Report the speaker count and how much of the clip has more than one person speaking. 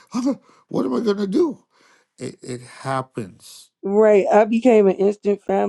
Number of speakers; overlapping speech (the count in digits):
2, no overlap